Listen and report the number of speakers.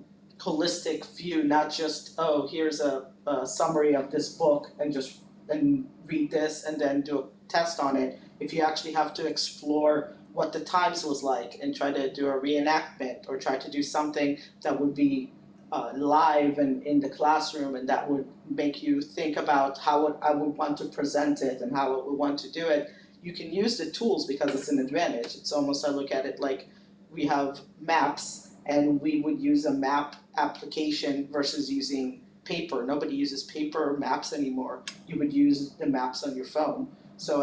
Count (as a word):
one